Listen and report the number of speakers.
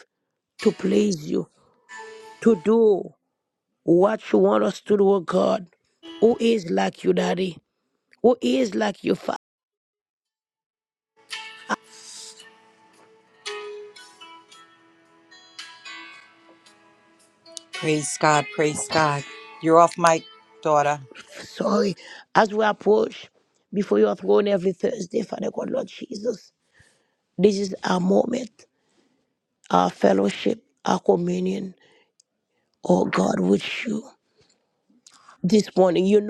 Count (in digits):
2